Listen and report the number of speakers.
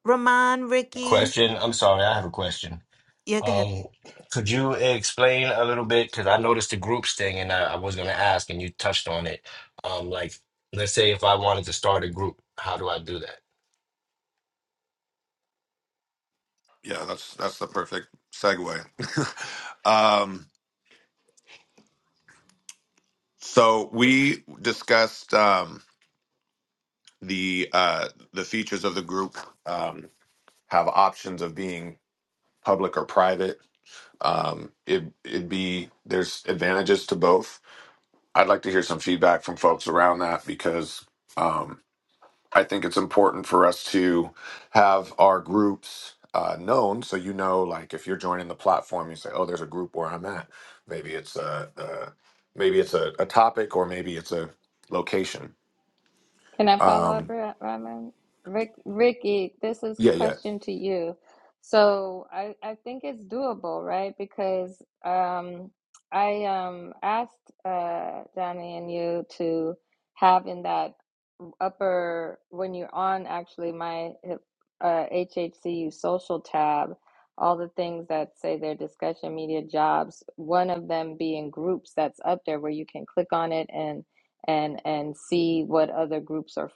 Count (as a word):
four